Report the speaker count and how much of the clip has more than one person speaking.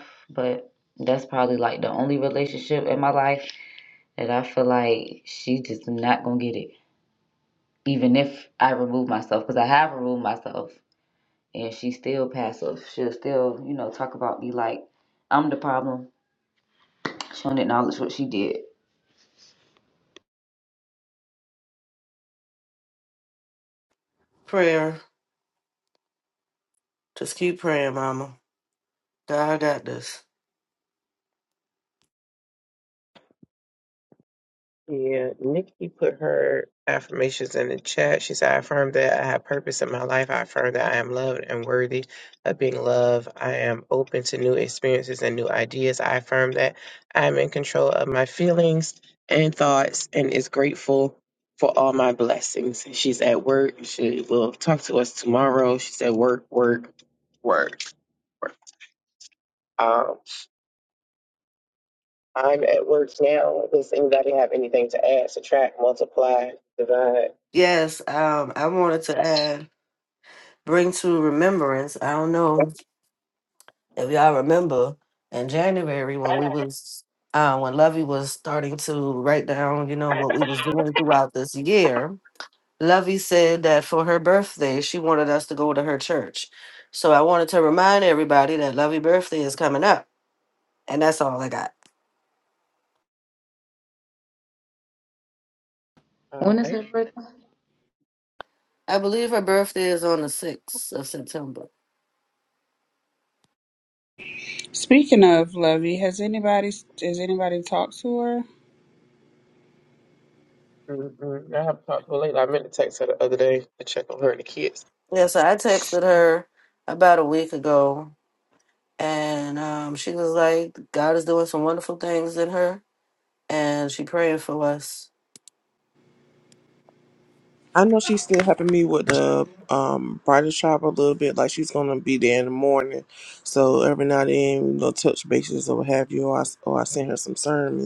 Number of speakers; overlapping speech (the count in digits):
5, under 1%